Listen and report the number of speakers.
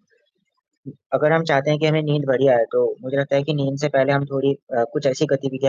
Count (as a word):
one